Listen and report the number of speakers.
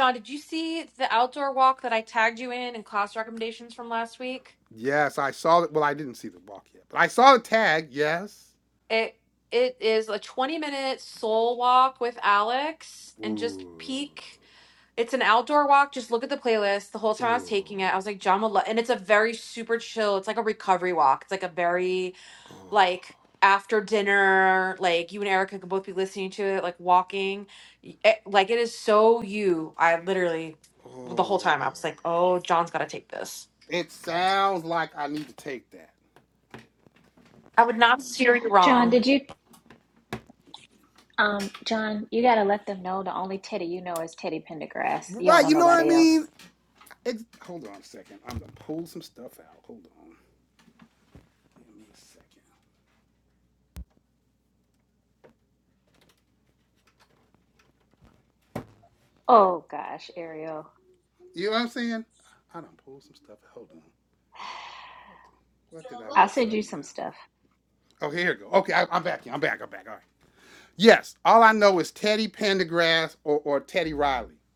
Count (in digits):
3